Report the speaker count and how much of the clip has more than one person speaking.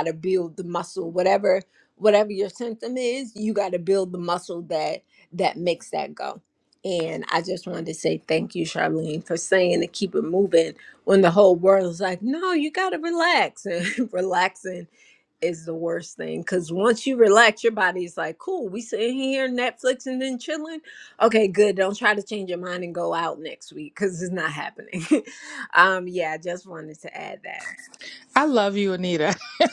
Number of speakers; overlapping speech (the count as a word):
two, no overlap